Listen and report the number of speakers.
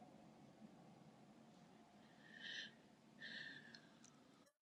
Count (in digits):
0